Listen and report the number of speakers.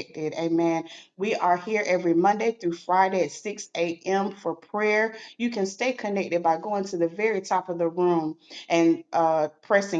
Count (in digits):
1